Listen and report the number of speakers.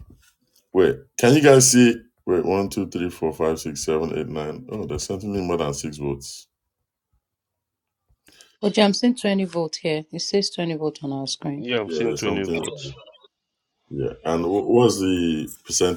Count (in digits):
3